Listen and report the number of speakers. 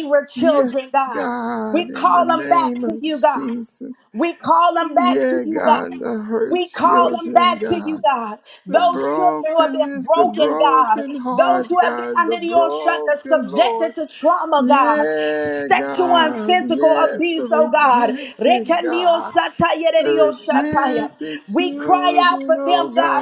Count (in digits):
2